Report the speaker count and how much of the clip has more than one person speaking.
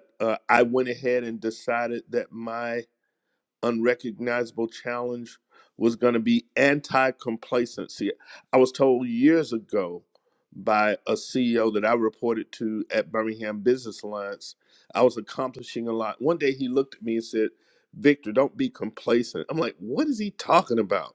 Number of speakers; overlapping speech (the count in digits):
1, no overlap